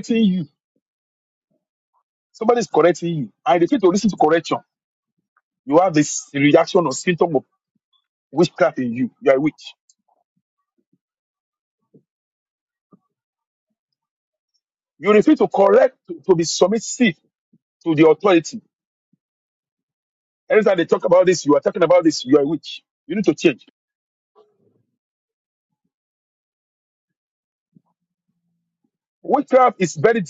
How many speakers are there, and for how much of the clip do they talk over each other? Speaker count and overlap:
1, no overlap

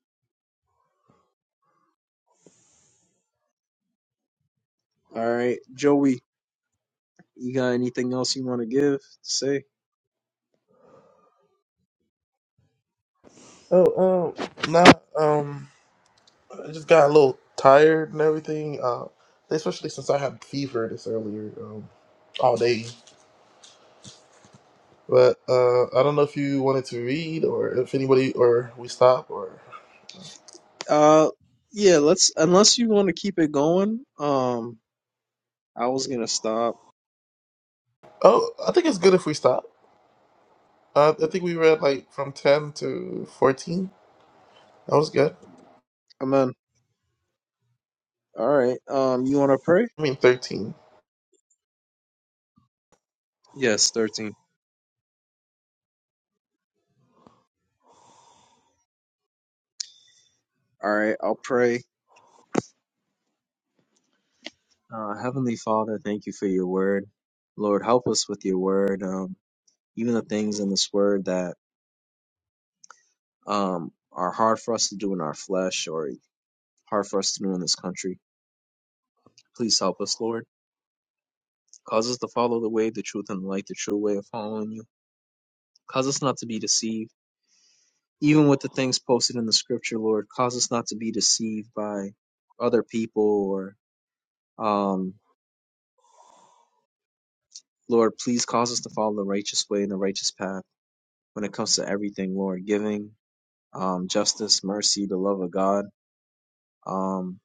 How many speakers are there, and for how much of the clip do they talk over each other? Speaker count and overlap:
2, no overlap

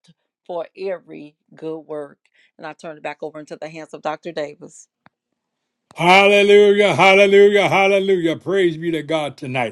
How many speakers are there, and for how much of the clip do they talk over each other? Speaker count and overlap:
2, no overlap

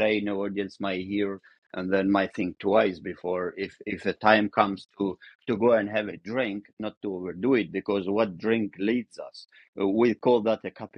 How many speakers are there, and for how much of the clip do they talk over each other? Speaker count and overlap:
1, no overlap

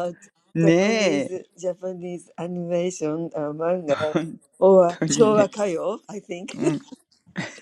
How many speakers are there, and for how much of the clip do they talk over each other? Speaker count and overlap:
2, about 19%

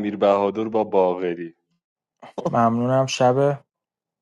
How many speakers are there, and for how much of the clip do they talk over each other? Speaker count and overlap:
2, no overlap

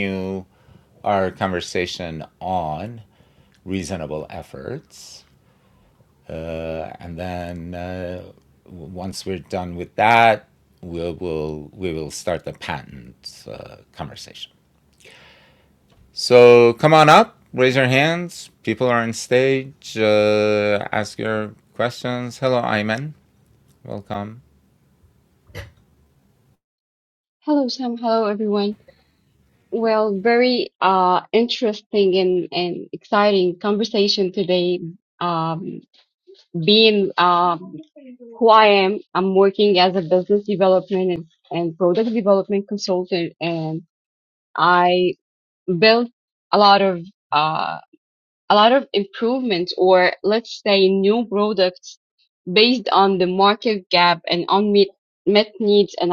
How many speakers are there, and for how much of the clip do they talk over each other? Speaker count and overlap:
2, no overlap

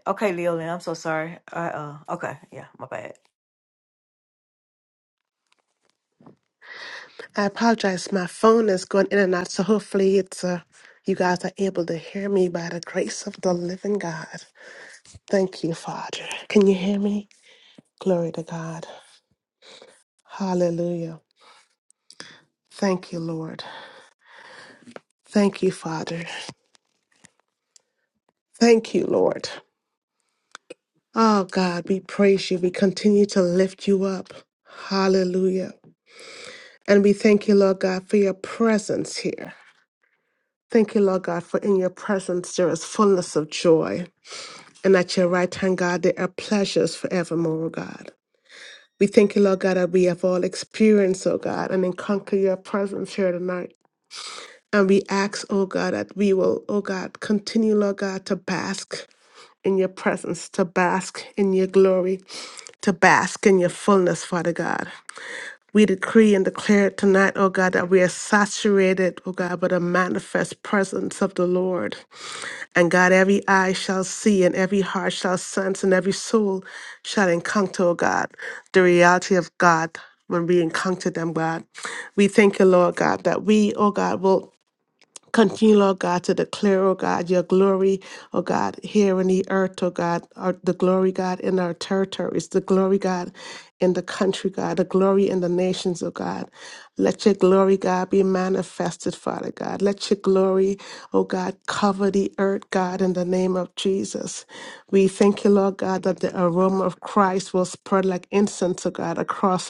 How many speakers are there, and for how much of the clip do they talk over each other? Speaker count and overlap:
2, no overlap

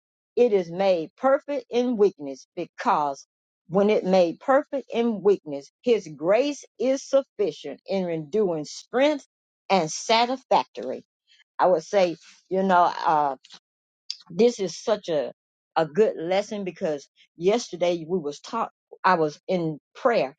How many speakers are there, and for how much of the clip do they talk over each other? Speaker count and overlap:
1, no overlap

